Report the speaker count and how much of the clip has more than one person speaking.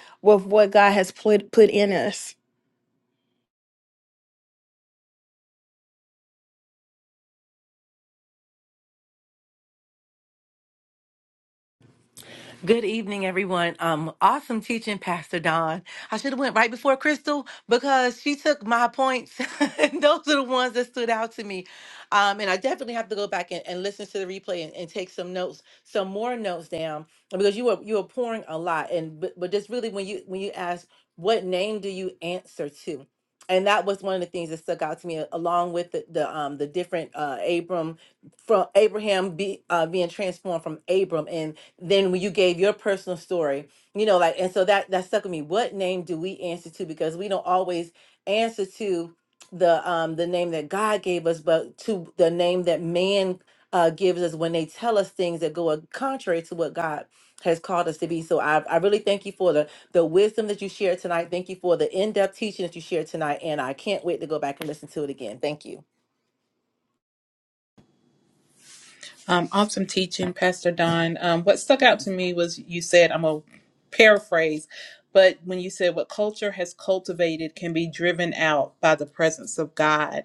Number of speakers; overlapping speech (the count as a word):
three, no overlap